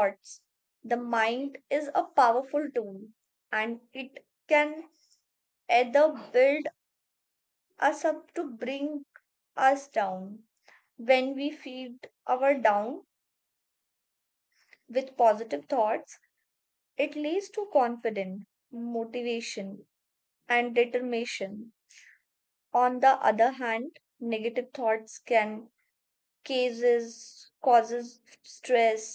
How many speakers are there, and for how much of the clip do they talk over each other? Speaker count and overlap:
1, no overlap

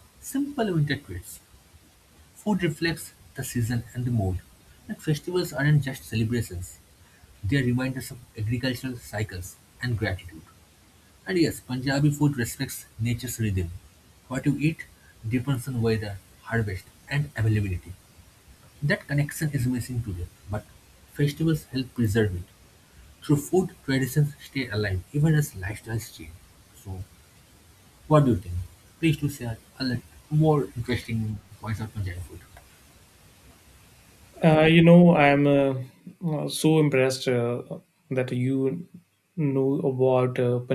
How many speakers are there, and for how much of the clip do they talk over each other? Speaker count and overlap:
2, no overlap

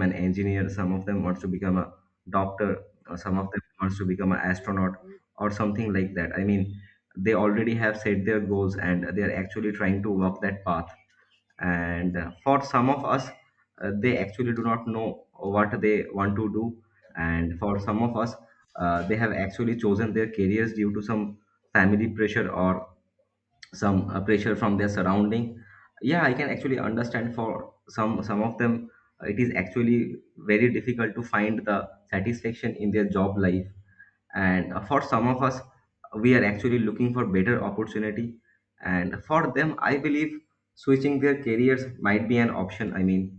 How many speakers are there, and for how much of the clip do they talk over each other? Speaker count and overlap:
1, no overlap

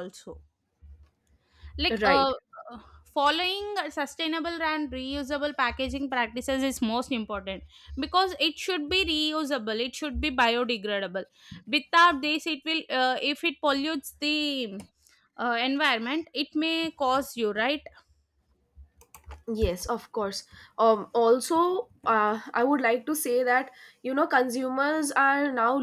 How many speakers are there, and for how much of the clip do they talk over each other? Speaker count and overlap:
2, about 1%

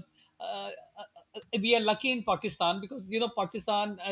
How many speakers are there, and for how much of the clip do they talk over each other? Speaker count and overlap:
1, no overlap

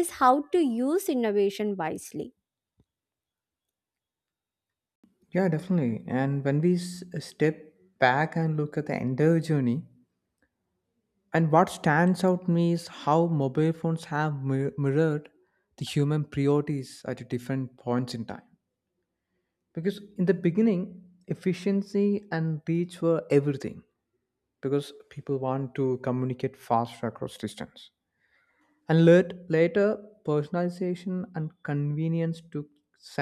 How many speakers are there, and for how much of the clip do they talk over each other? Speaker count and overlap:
2, no overlap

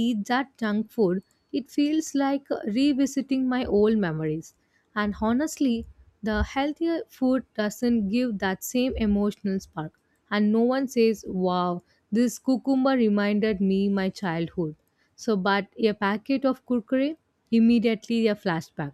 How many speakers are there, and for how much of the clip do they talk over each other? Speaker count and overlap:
1, no overlap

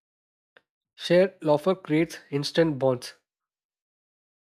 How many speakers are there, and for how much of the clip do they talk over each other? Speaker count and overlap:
1, no overlap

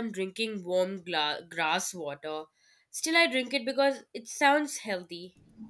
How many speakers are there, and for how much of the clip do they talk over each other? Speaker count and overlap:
1, no overlap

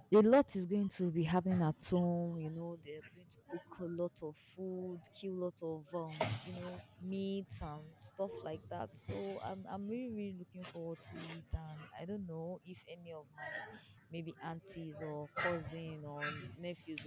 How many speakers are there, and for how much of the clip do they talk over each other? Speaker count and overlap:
1, no overlap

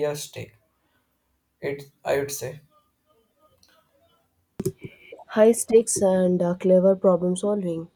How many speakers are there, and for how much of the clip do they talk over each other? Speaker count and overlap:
2, no overlap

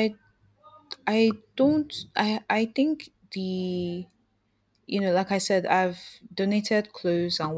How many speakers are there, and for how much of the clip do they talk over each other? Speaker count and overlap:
1, no overlap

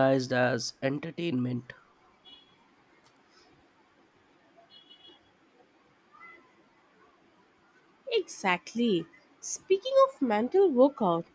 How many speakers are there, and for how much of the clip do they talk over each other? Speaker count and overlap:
2, no overlap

